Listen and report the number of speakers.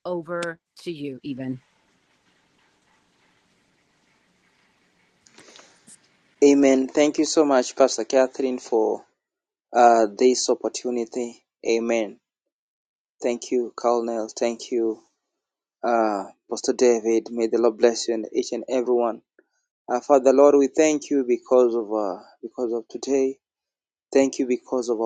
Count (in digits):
2